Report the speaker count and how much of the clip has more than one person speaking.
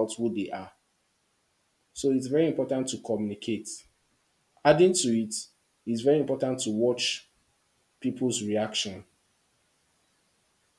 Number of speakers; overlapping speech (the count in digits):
1, no overlap